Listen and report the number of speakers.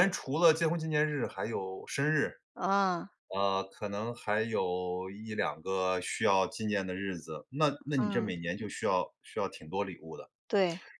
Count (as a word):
two